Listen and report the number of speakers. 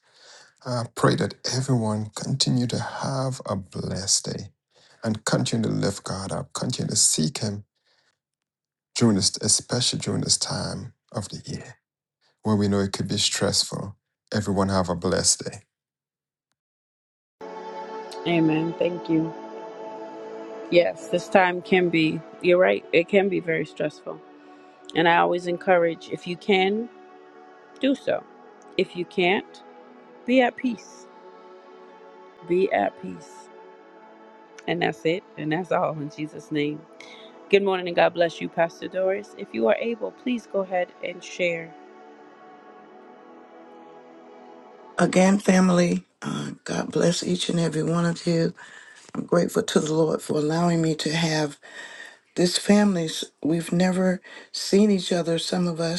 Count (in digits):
3